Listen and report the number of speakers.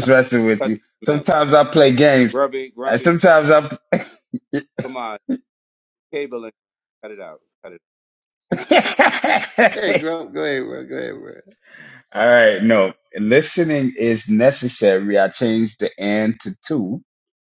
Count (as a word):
three